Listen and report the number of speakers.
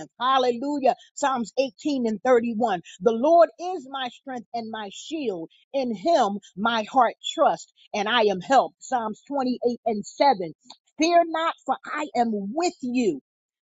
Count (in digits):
1